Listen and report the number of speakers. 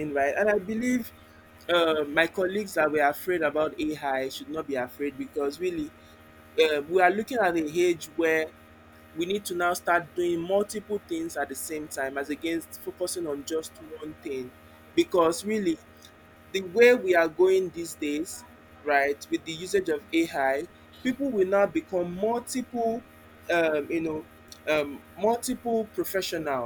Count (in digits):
1